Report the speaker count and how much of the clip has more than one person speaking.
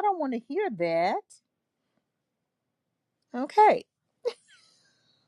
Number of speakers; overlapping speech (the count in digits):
1, no overlap